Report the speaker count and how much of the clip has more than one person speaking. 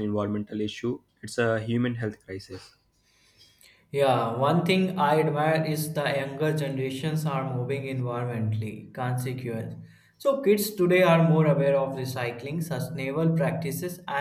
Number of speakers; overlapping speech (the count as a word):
two, no overlap